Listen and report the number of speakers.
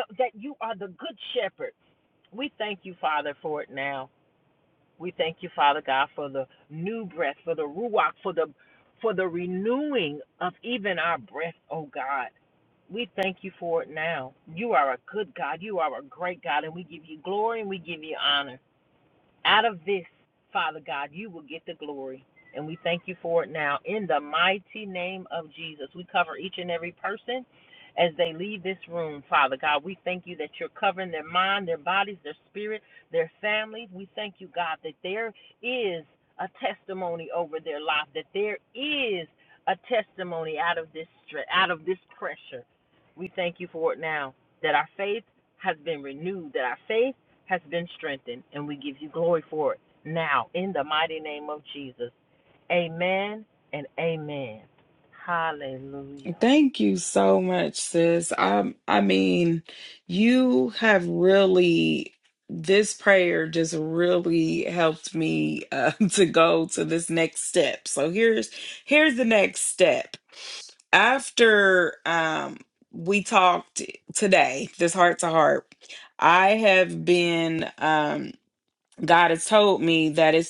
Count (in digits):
2